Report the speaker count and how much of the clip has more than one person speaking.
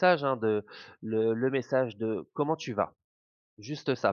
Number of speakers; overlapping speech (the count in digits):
1, no overlap